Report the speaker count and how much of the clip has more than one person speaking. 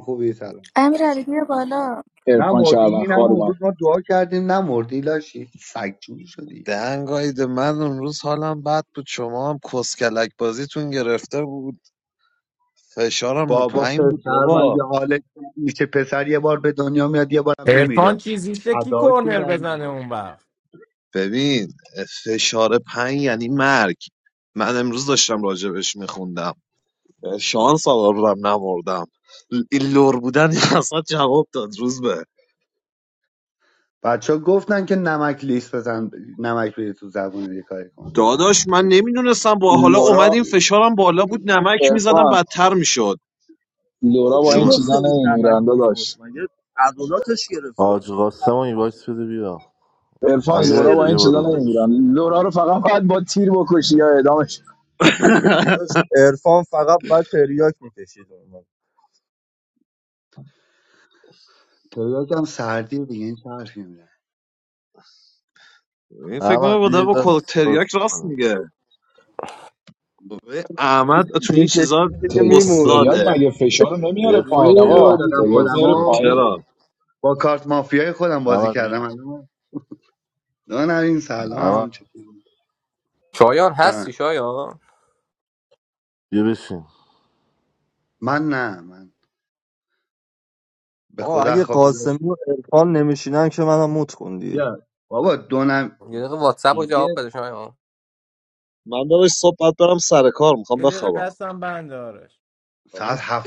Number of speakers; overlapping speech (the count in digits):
8, about 17%